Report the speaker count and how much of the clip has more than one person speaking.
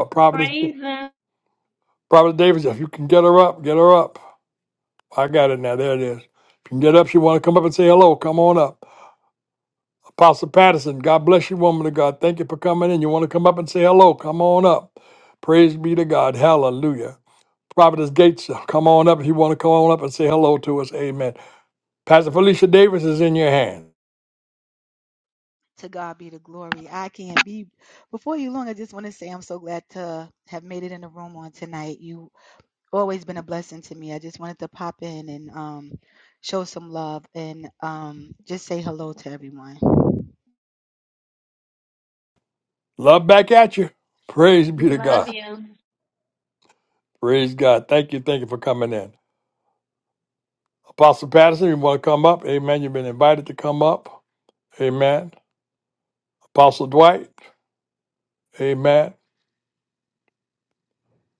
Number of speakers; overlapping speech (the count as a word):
three, about 1%